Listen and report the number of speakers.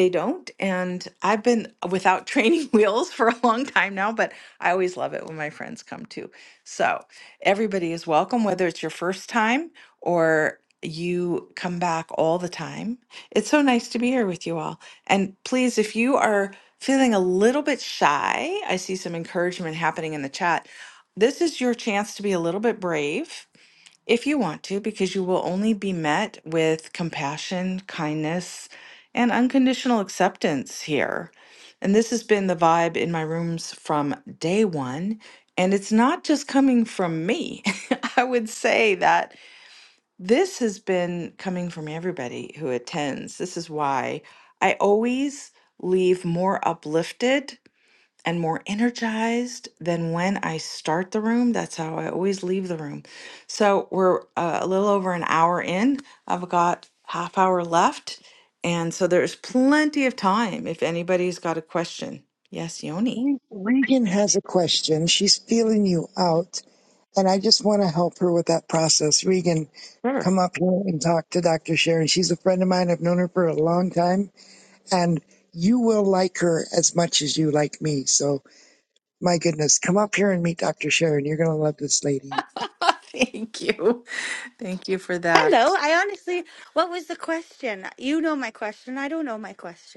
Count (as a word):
three